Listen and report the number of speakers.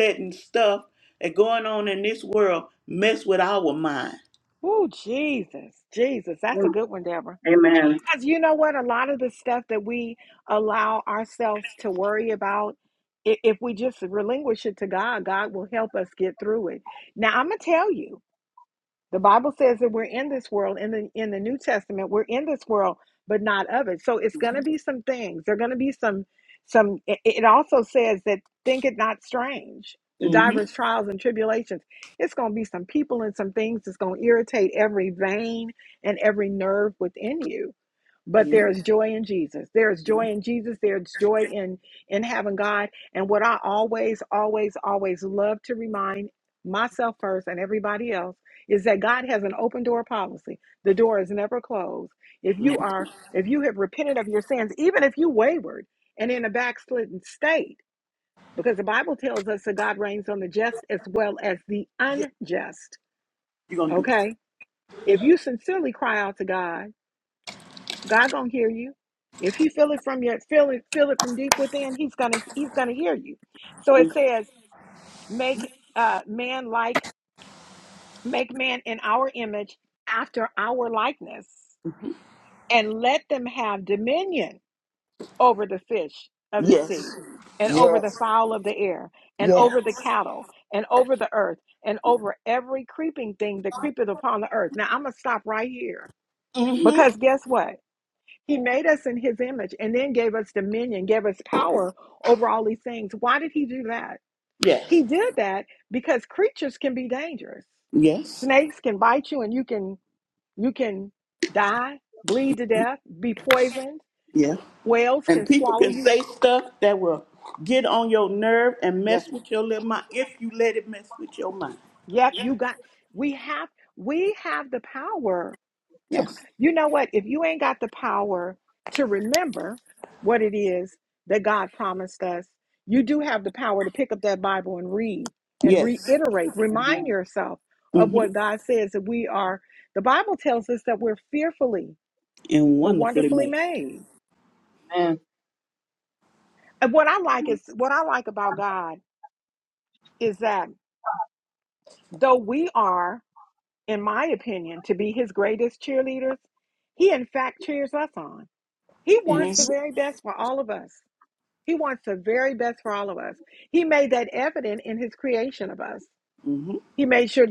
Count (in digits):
3